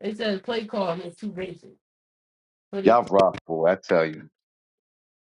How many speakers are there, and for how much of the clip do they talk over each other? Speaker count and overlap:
two, about 7%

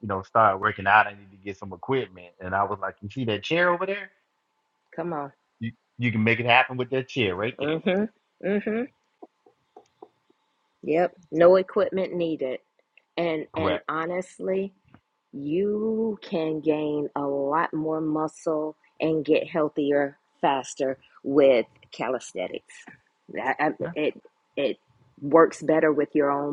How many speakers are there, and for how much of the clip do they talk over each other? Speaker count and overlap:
two, about 2%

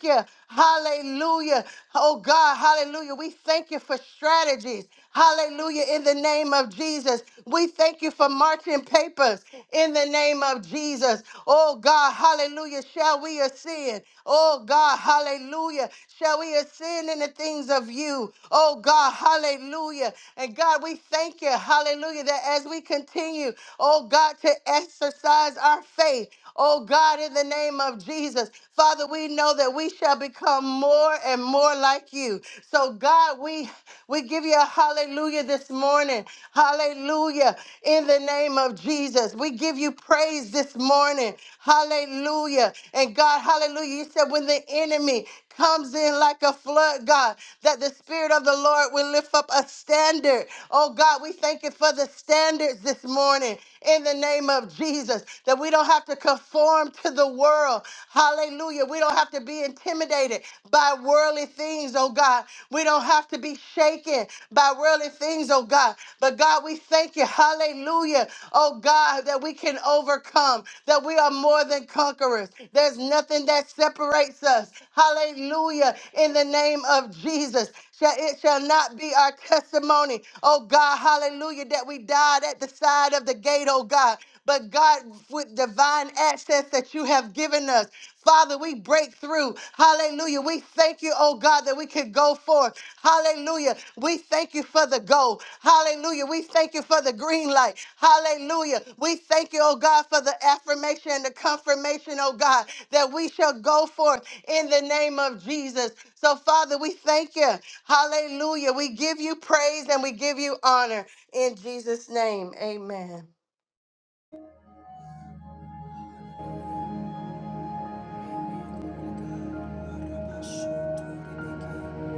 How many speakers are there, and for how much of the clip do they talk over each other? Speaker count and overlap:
two, no overlap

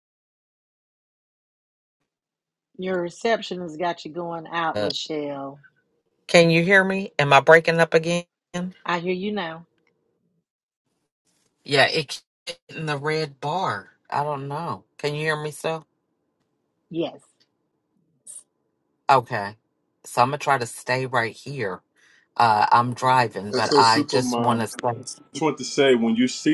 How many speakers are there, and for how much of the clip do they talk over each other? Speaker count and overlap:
three, about 5%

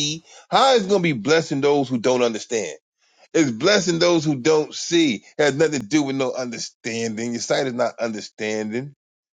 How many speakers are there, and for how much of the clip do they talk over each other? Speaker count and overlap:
one, no overlap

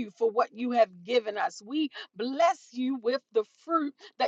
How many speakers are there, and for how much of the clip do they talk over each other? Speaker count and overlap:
one, no overlap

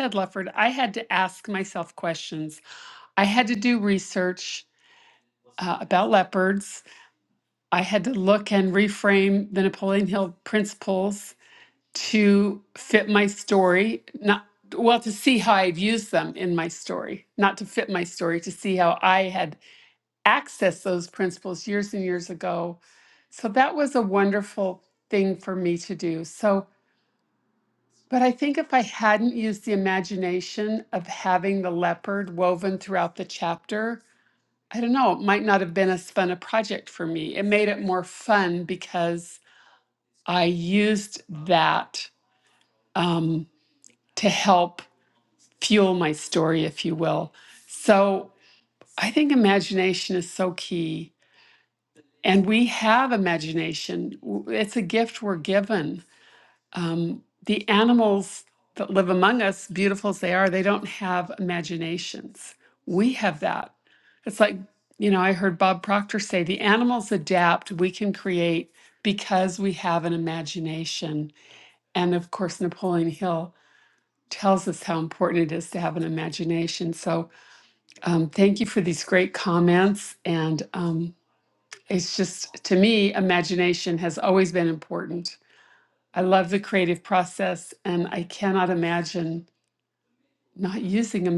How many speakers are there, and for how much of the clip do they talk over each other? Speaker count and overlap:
one, no overlap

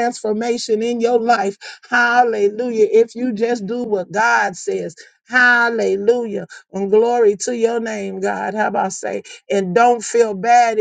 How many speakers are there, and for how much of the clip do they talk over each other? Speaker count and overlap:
one, no overlap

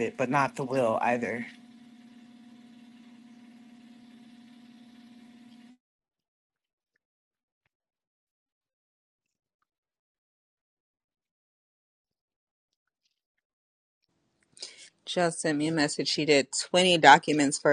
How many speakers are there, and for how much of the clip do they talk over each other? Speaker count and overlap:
two, no overlap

